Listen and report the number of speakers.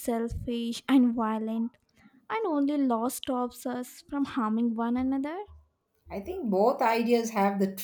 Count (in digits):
2